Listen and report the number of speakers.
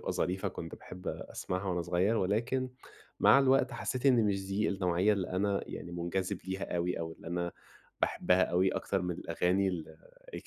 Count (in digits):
1